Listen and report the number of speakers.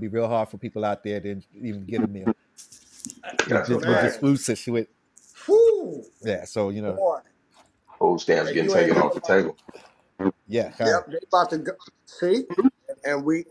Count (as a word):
three